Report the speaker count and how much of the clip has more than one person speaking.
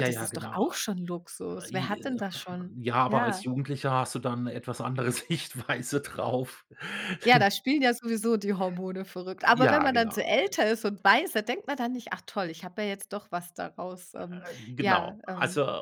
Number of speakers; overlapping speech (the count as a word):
two, about 27%